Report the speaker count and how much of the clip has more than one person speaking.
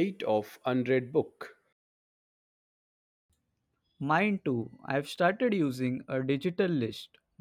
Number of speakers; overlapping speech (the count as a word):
two, no overlap